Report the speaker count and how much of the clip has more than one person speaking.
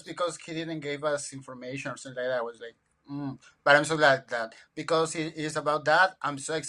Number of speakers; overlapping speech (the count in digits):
1, no overlap